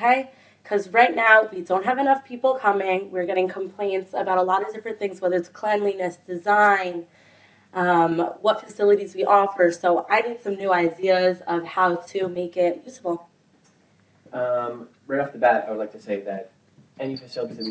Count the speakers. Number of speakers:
two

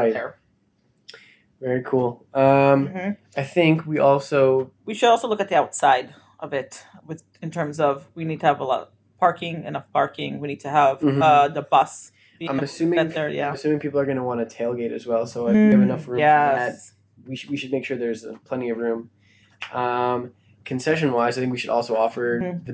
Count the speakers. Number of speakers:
two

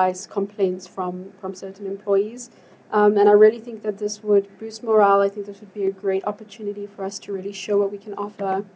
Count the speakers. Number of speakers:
one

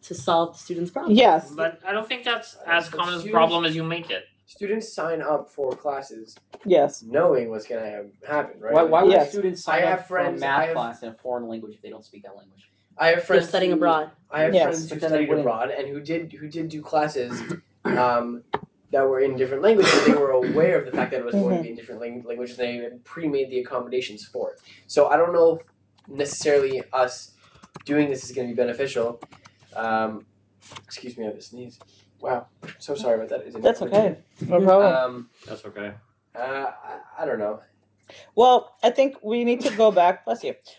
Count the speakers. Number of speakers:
five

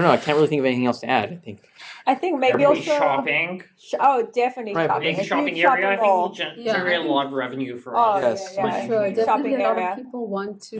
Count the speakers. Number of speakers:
four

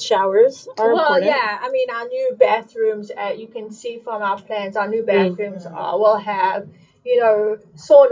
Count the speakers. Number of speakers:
two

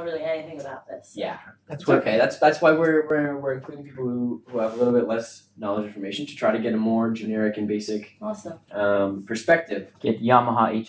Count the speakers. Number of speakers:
three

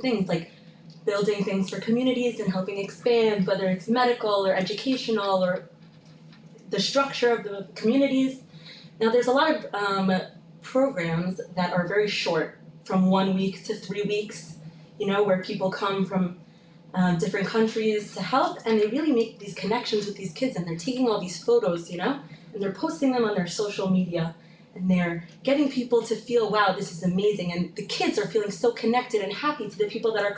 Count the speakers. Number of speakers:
one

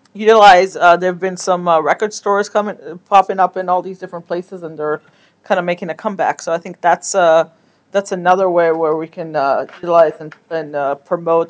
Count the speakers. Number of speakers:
one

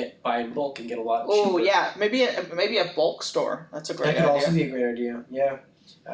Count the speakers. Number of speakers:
two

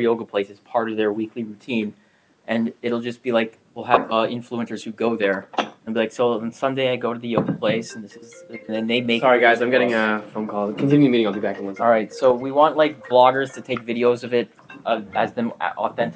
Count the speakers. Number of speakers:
two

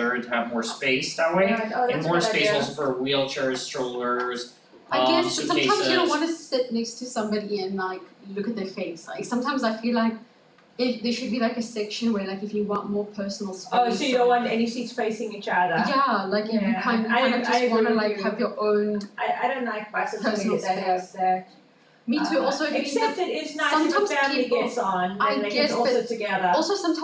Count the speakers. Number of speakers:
three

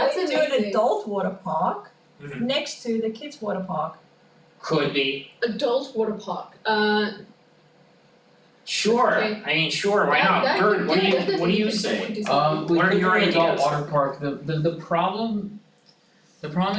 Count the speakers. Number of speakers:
four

